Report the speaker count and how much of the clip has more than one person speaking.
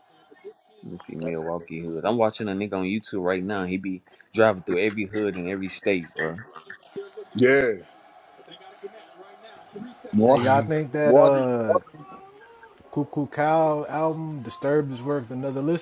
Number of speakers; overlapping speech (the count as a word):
three, about 6%